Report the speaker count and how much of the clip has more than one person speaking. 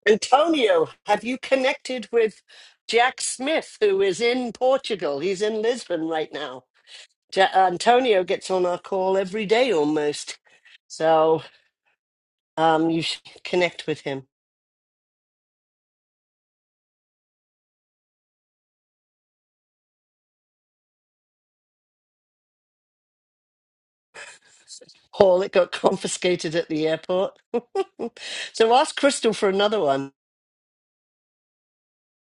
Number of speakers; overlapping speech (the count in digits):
1, no overlap